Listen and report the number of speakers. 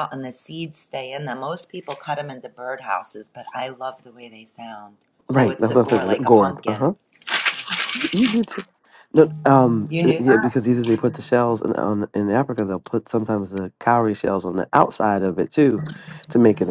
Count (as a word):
two